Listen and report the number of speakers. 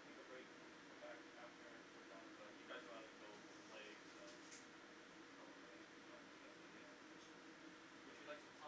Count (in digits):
1